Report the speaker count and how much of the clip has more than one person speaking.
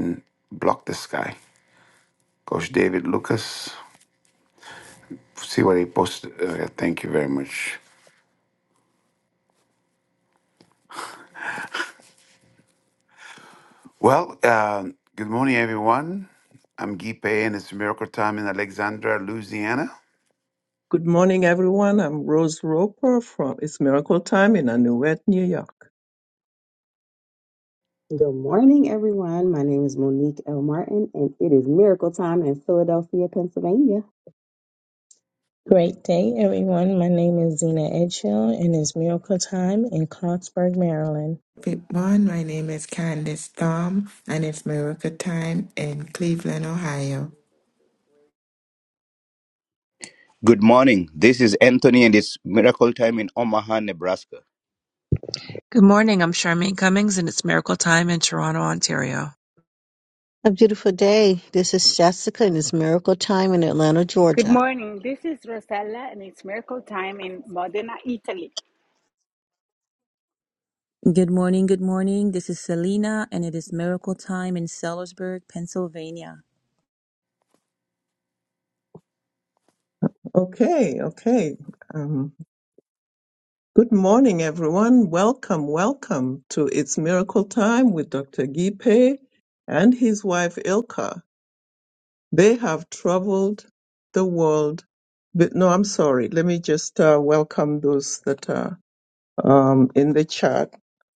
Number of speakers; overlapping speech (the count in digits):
10, under 1%